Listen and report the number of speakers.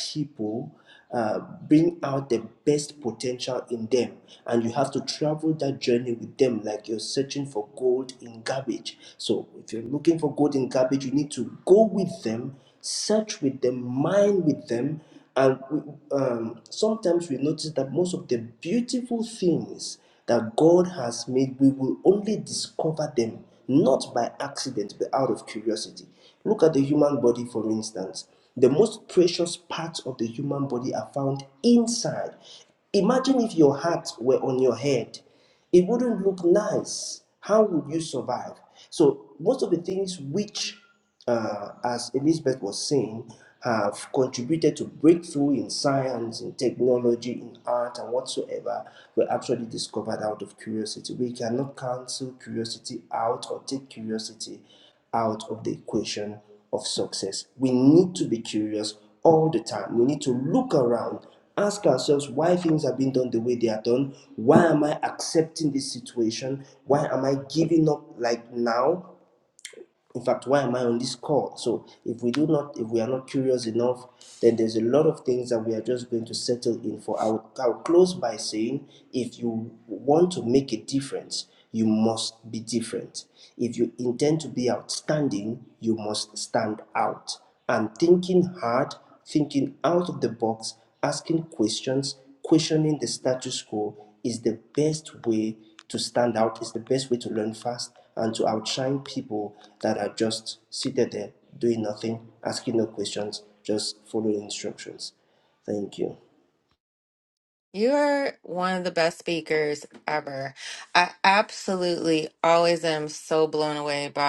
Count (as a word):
two